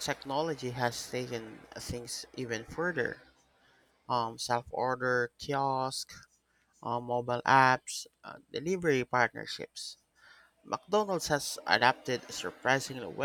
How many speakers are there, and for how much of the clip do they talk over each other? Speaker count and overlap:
one, no overlap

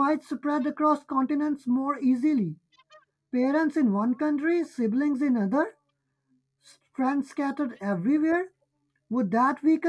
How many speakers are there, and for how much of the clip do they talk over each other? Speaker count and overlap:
one, no overlap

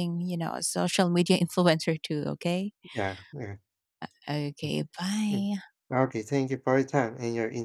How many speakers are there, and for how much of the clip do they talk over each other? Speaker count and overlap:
two, about 4%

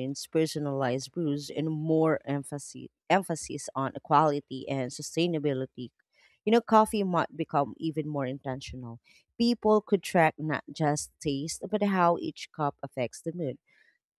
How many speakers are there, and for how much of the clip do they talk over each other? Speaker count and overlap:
one, no overlap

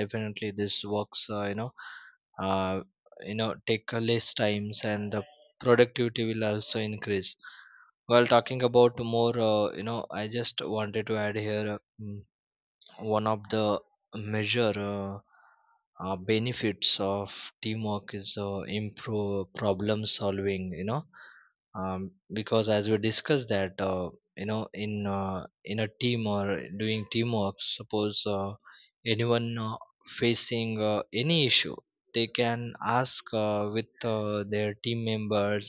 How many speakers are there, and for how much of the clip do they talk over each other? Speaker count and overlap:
one, no overlap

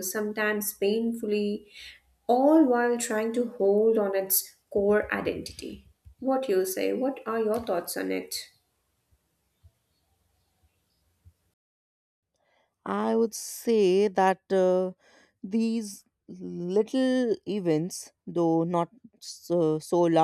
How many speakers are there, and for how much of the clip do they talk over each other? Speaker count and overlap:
two, no overlap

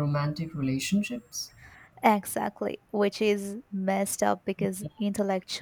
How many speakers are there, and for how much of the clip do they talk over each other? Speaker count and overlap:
two, no overlap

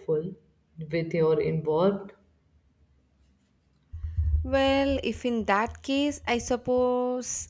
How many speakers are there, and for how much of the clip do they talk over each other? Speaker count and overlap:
two, no overlap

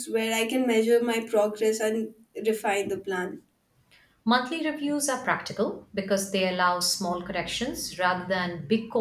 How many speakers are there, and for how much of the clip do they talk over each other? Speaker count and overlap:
two, no overlap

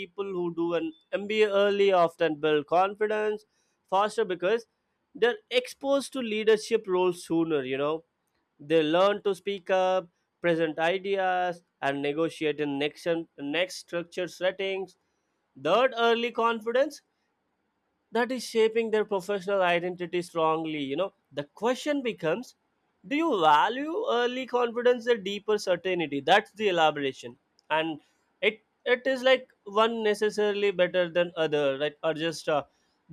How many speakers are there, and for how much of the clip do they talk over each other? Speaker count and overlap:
one, no overlap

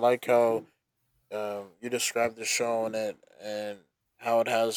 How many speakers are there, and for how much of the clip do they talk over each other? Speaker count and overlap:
one, no overlap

